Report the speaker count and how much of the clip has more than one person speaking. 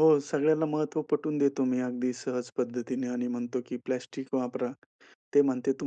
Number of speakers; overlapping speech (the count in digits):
1, no overlap